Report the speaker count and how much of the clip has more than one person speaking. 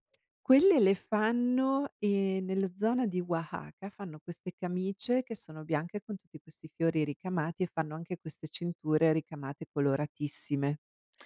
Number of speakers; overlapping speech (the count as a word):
one, no overlap